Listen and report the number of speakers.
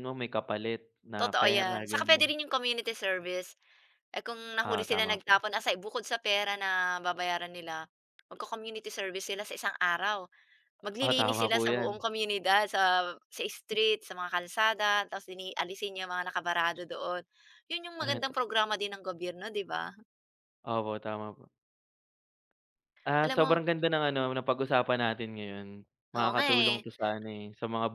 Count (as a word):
two